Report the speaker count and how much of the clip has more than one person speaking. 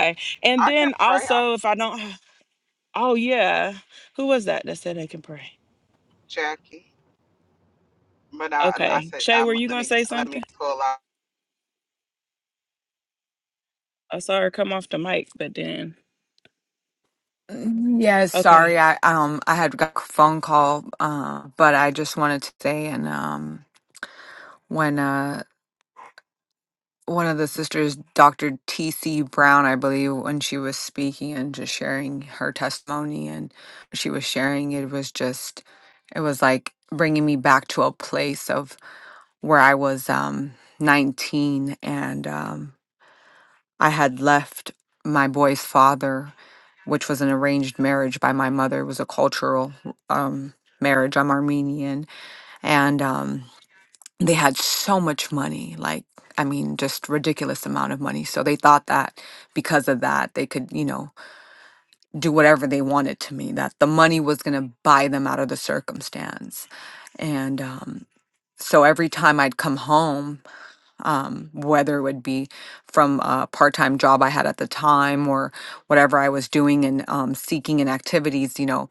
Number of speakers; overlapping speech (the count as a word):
three, about 4%